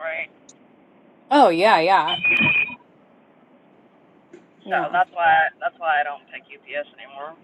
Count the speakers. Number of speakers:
2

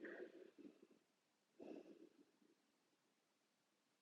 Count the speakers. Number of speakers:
0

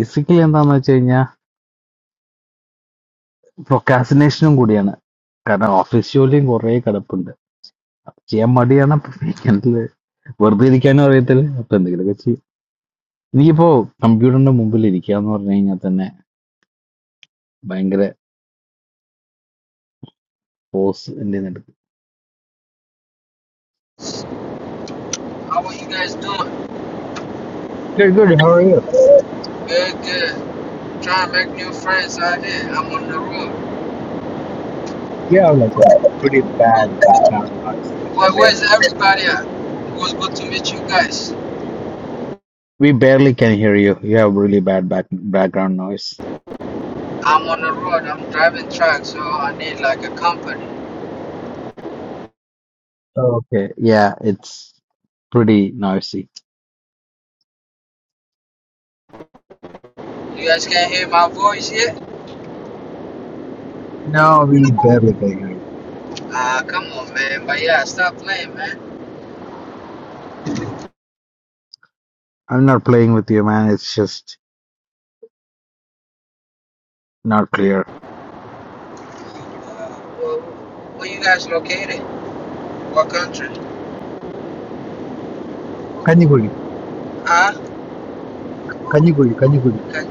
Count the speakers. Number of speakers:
2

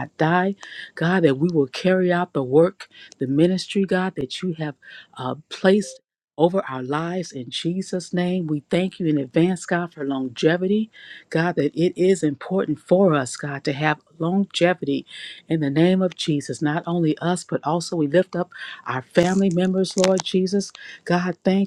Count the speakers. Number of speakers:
1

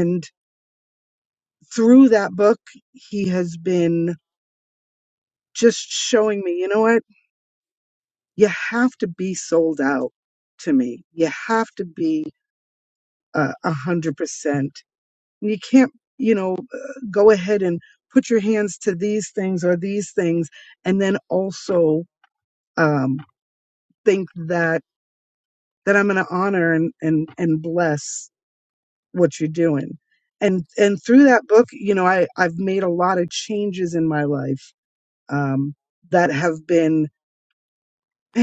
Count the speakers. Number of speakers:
1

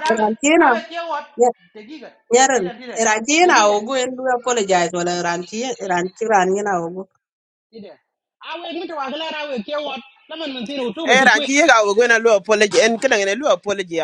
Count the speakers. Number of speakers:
3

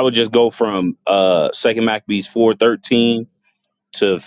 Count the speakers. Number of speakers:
1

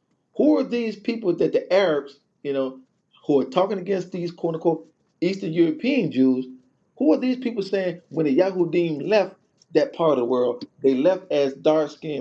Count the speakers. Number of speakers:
1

